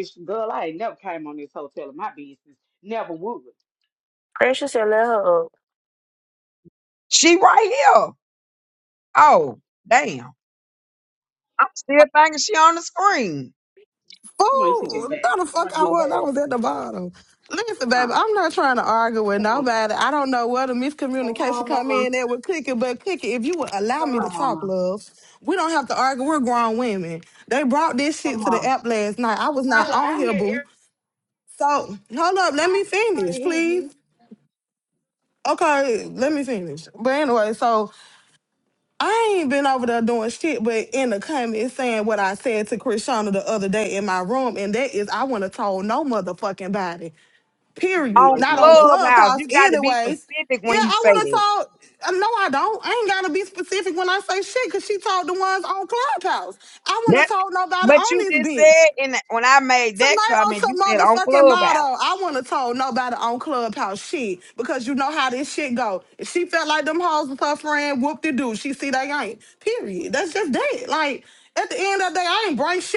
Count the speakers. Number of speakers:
4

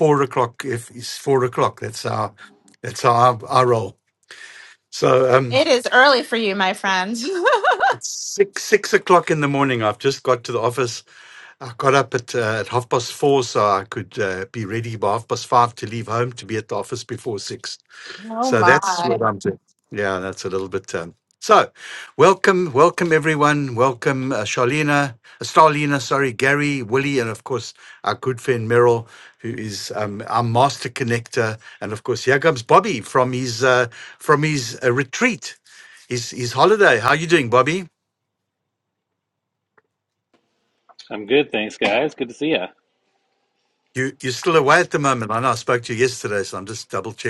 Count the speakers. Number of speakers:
3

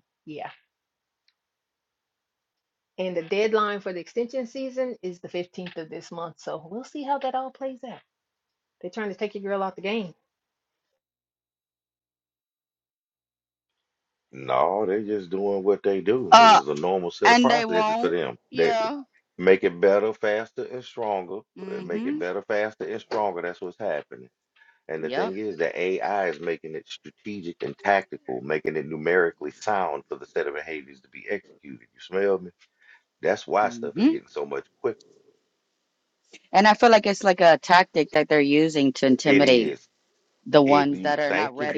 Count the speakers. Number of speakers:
3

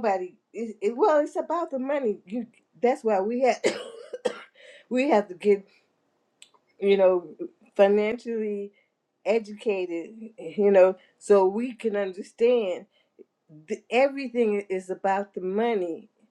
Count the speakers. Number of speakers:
1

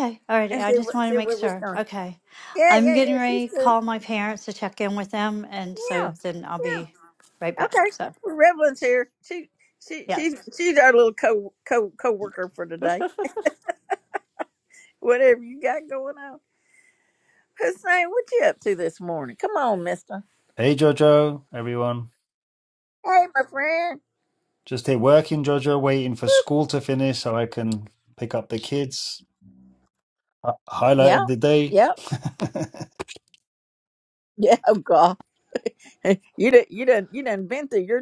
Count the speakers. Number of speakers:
3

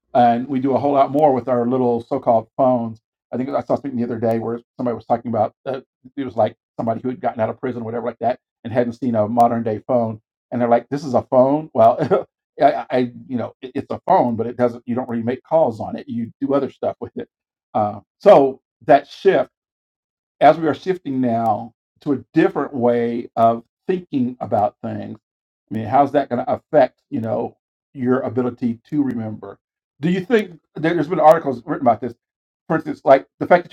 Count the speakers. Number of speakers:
1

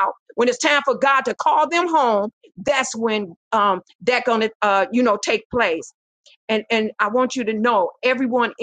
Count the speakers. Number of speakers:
1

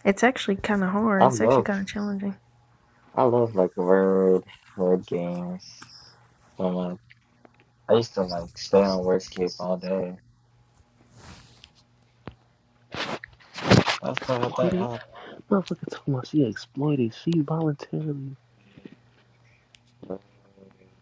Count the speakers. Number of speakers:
3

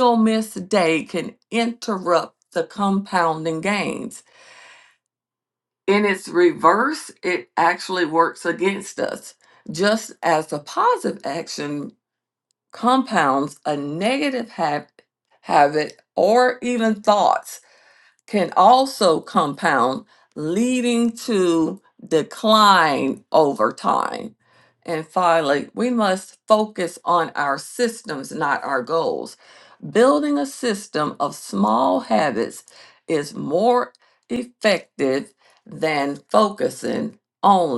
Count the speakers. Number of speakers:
1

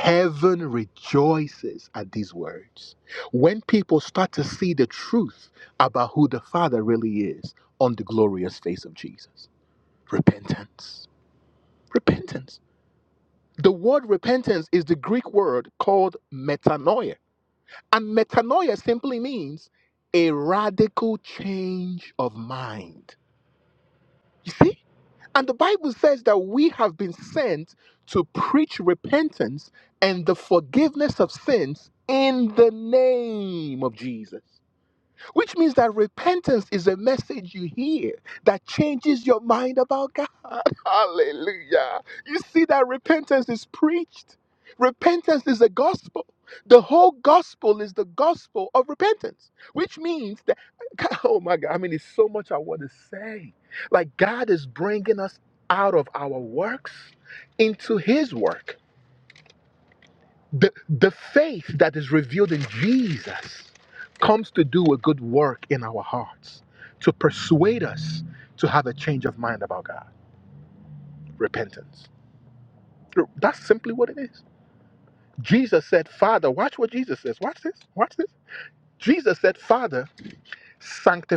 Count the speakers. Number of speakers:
1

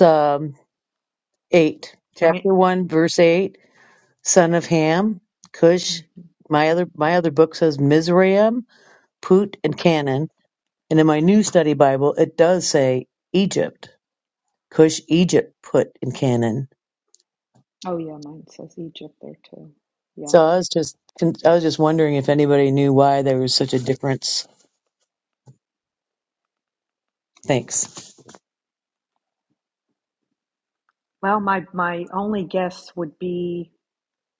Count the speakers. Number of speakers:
2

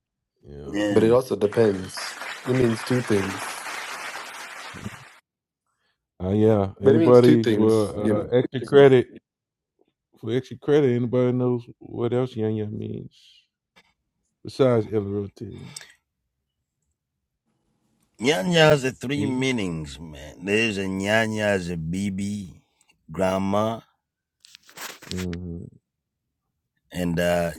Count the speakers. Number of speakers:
3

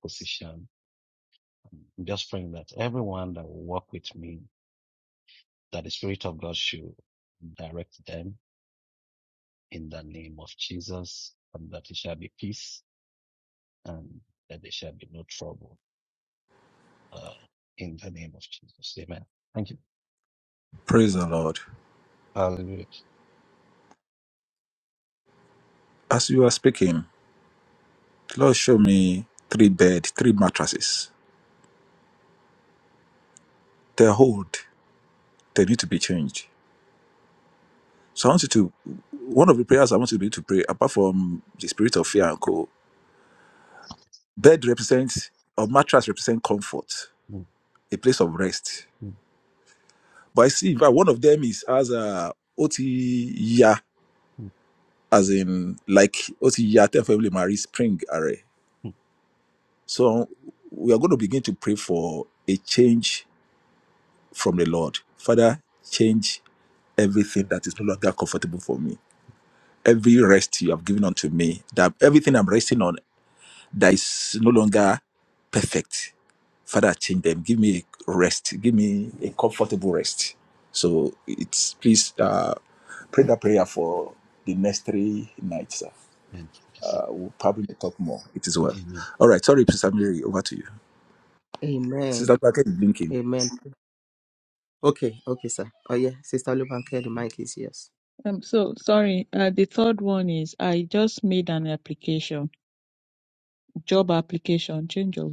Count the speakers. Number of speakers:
4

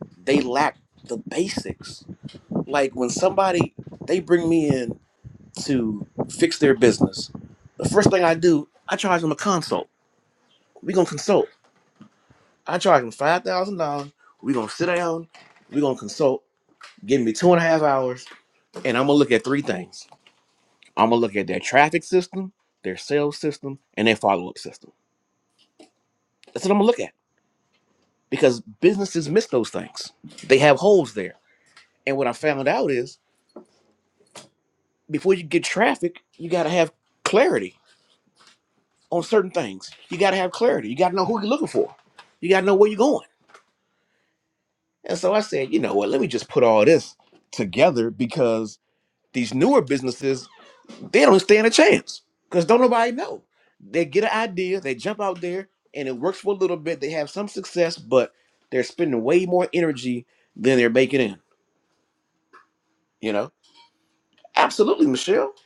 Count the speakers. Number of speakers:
1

